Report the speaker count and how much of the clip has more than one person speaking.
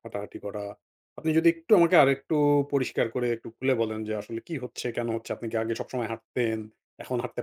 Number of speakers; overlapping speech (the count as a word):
one, no overlap